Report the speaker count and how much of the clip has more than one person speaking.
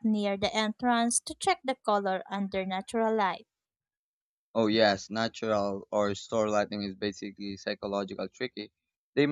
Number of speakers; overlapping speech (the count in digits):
2, no overlap